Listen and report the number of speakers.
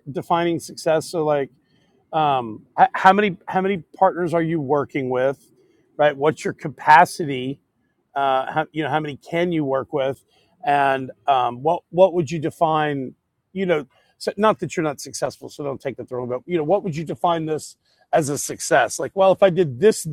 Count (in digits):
1